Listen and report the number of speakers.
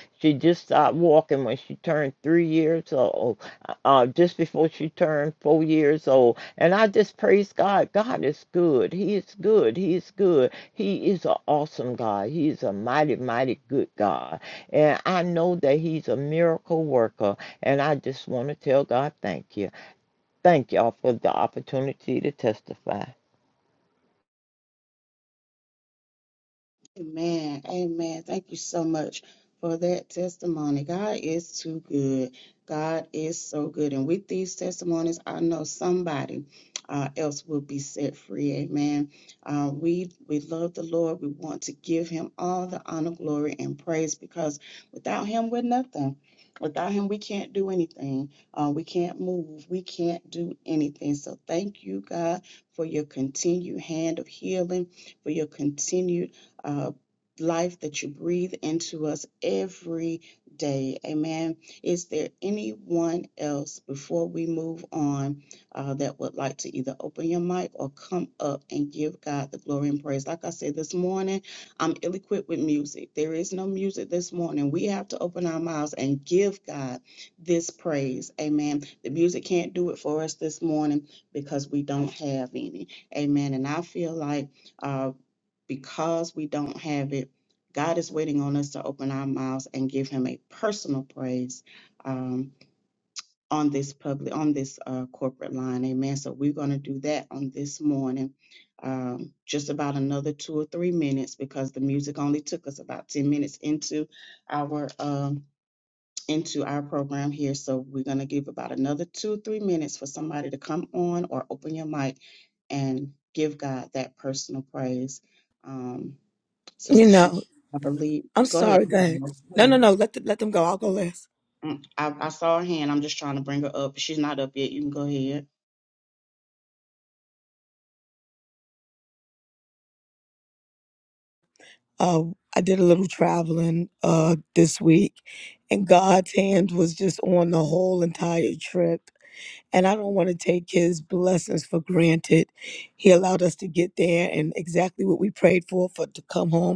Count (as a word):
three